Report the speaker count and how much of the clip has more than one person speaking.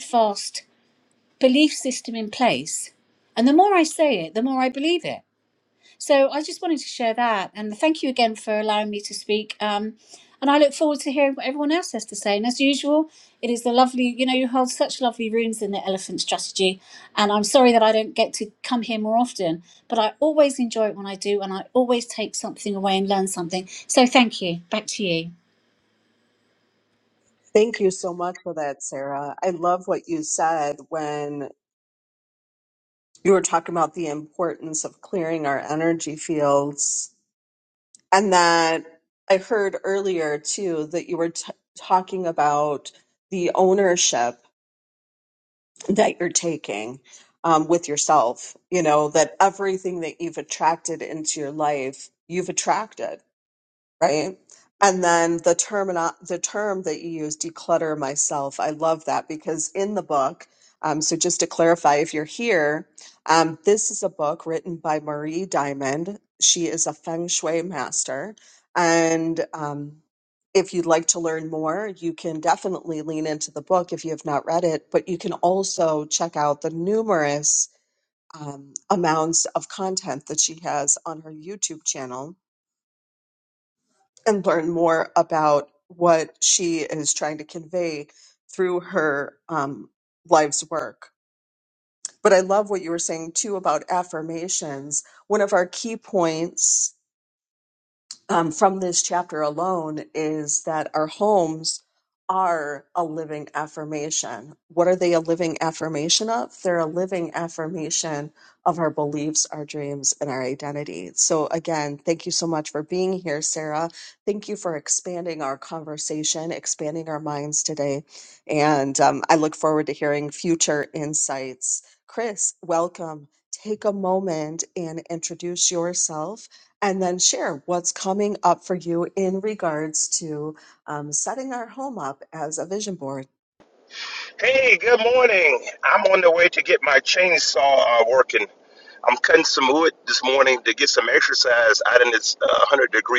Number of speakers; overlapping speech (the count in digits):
3, no overlap